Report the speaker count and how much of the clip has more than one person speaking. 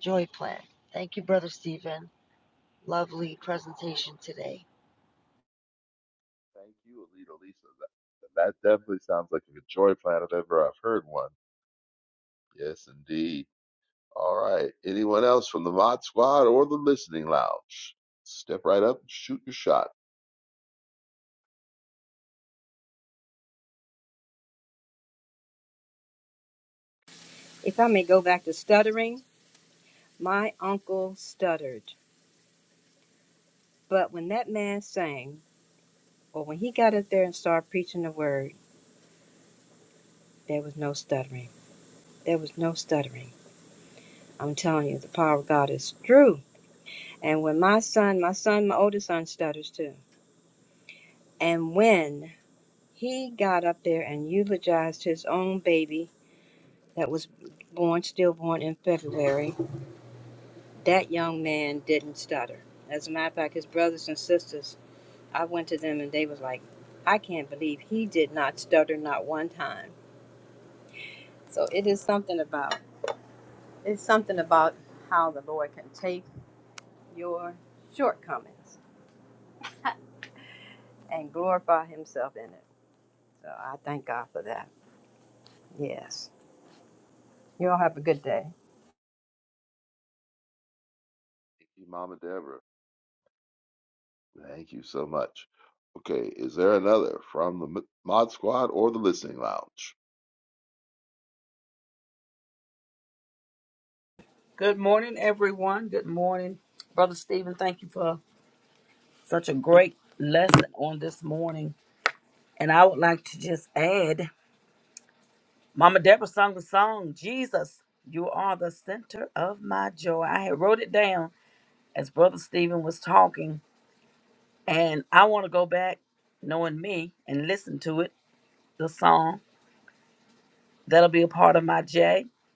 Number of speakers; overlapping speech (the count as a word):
four, no overlap